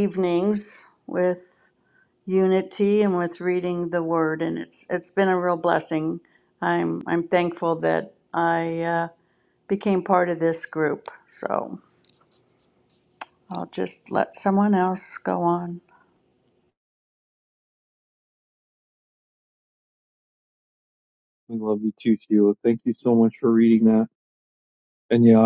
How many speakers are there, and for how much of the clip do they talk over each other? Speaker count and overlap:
2, no overlap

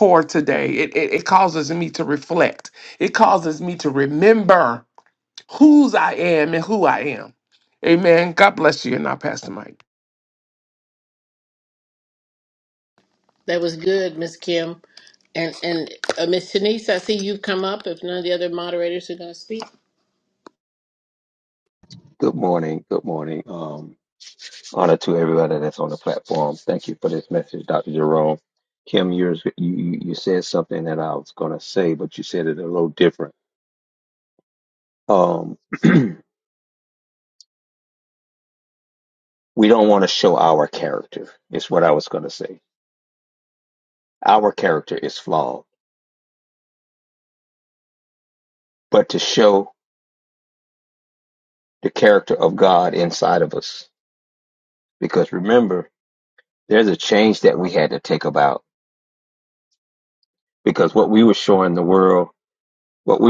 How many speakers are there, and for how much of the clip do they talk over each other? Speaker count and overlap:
3, no overlap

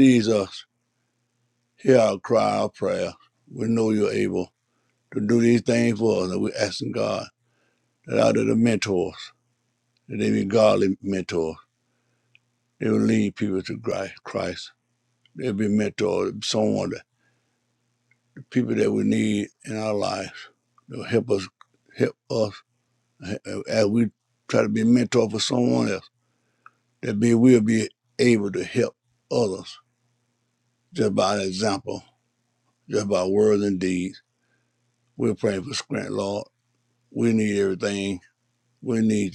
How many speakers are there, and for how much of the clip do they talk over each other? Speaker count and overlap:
1, no overlap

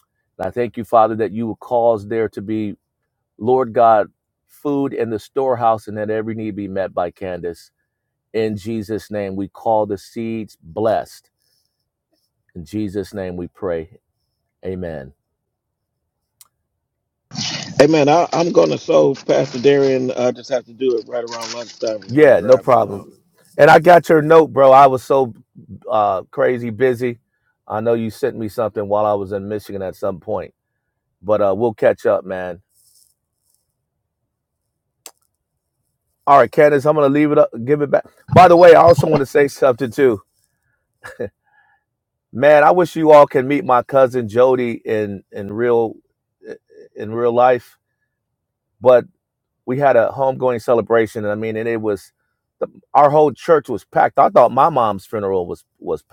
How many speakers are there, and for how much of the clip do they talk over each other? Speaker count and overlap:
2, about 2%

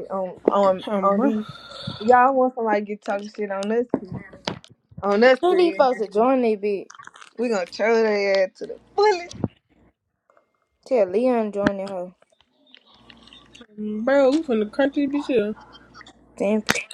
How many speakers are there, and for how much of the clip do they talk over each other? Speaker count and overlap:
3, about 6%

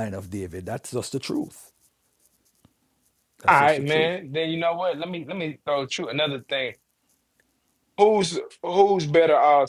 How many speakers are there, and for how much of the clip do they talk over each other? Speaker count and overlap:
2, about 6%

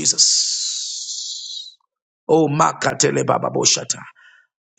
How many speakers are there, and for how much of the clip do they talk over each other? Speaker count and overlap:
1, no overlap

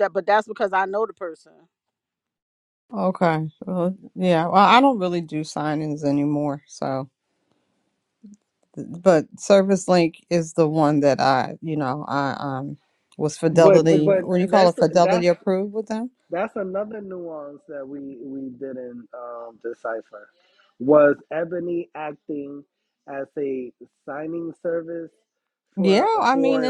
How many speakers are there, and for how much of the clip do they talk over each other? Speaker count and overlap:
3, about 10%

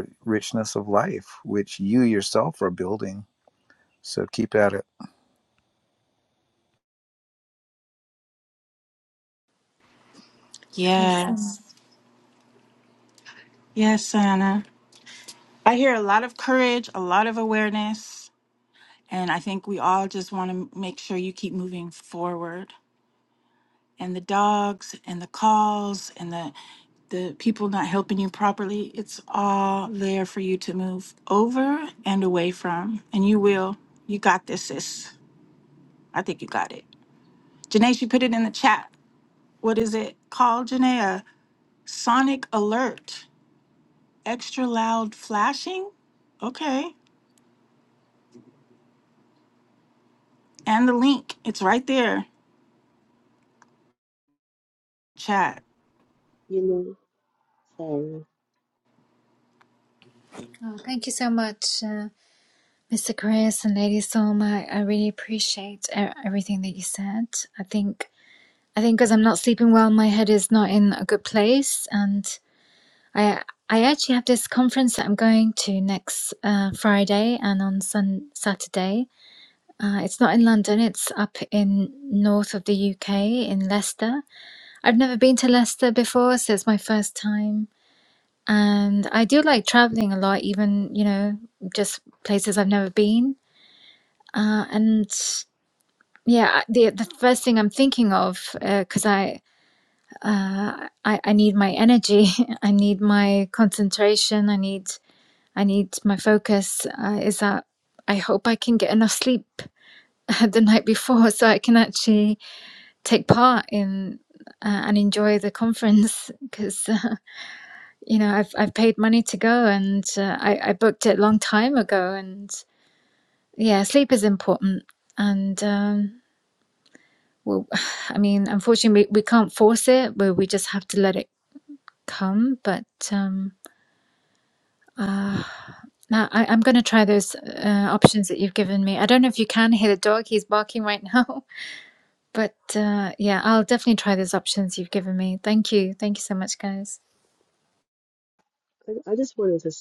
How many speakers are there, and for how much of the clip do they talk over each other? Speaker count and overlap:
4, under 1%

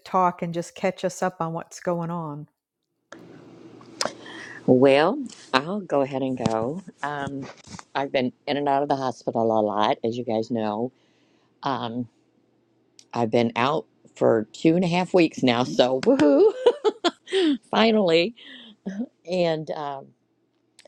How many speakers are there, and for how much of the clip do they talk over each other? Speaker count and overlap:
2, no overlap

